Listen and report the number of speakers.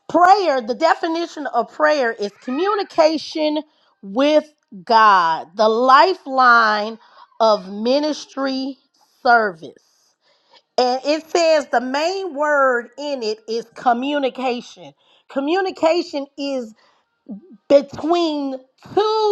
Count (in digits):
1